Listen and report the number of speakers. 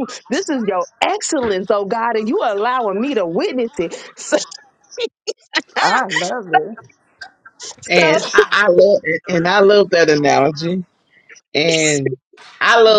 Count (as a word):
three